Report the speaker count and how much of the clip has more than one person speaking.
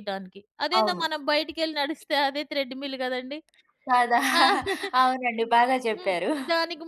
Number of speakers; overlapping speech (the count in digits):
2, about 10%